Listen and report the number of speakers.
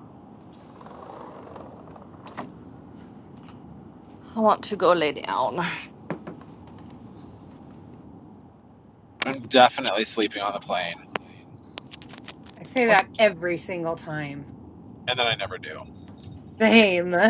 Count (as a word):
three